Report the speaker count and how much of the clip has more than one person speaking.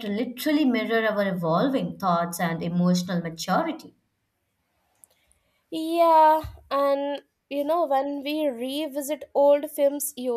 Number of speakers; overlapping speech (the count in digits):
2, no overlap